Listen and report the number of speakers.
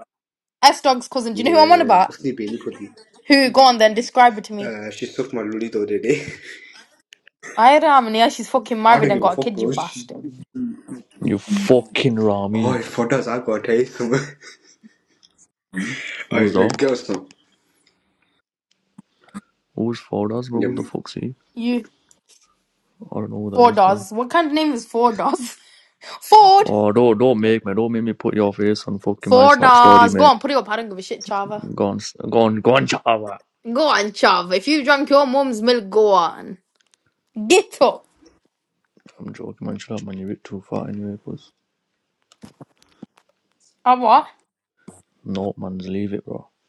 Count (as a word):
three